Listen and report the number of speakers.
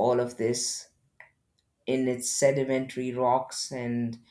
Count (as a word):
one